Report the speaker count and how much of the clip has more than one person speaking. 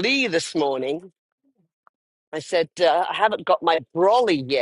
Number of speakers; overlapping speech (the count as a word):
one, no overlap